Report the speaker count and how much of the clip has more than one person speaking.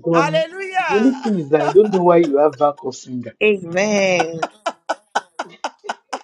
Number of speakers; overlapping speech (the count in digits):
3, about 9%